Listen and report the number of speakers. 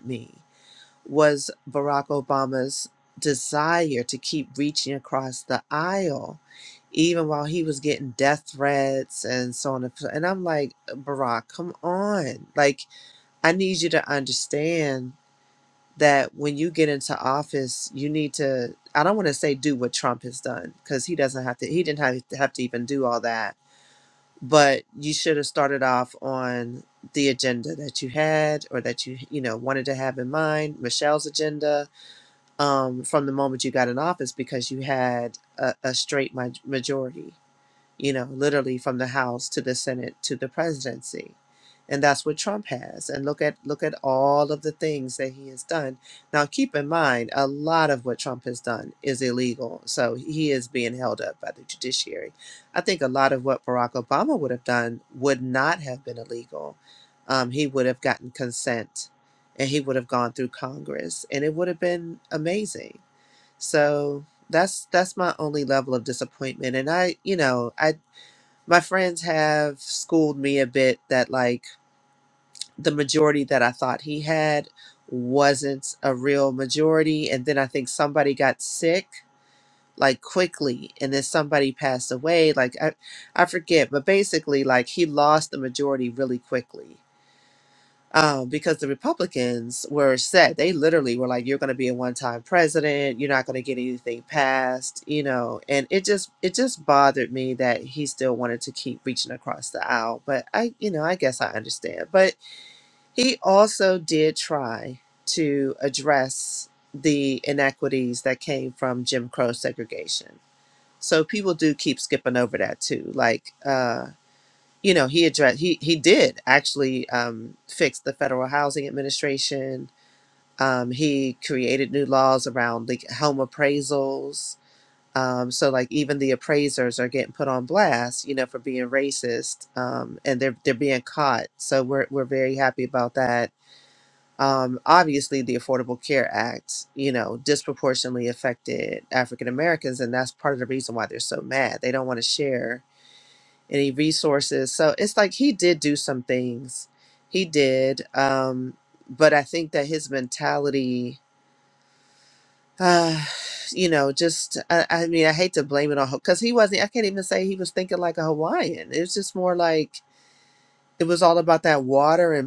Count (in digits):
1